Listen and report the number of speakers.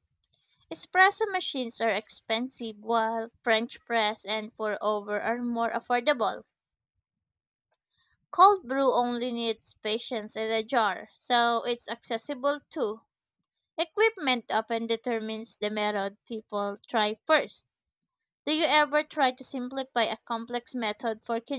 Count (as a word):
one